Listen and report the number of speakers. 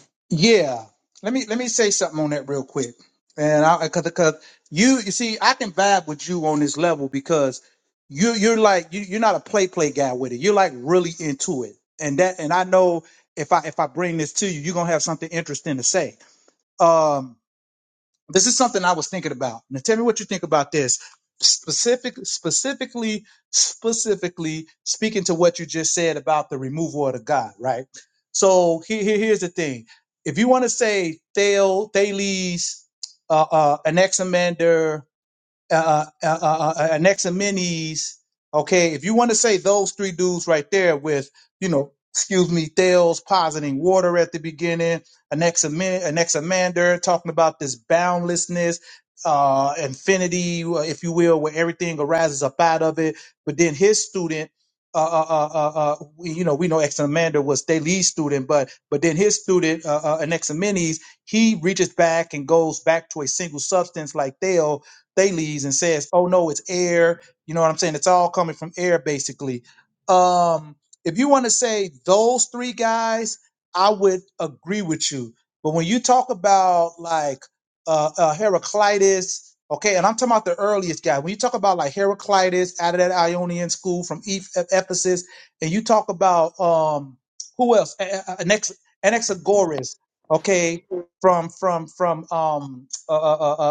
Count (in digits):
1